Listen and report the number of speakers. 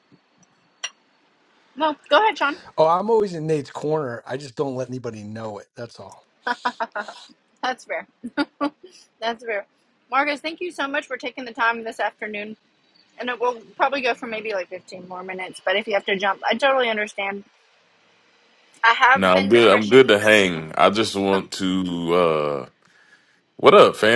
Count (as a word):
three